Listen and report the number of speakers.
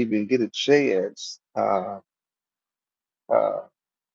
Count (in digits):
1